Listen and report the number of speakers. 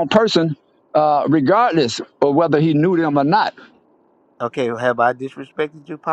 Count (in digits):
2